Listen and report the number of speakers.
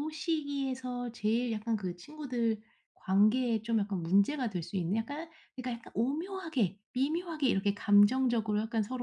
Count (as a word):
one